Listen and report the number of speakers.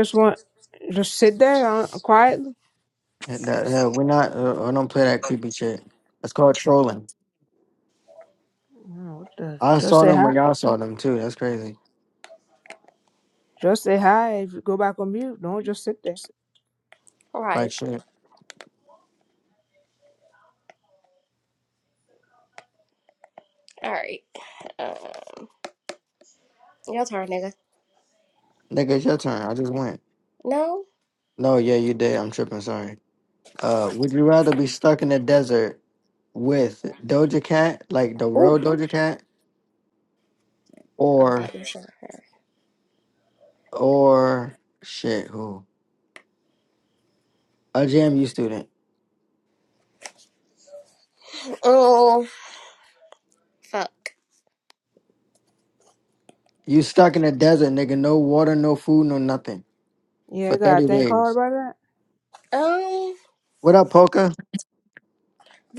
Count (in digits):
3